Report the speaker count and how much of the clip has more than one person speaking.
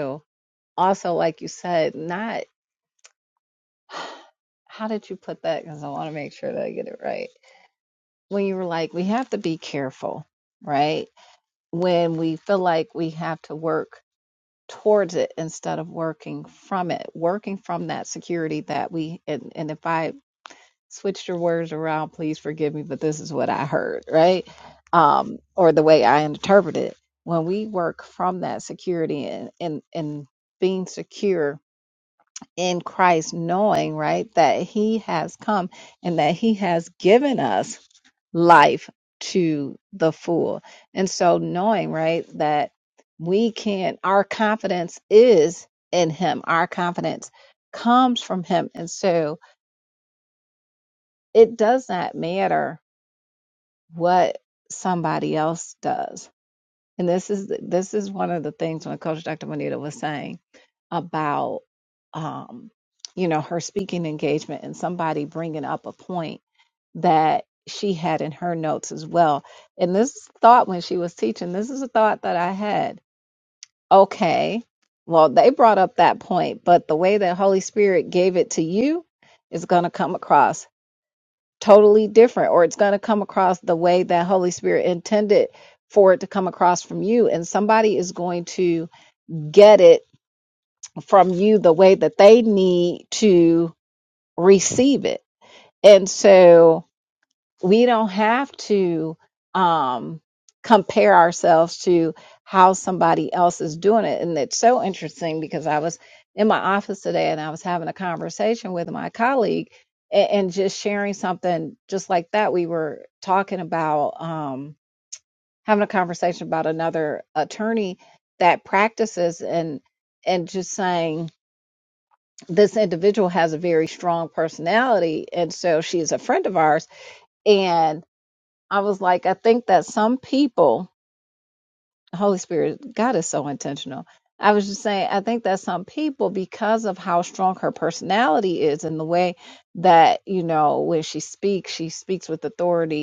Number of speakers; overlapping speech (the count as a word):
one, no overlap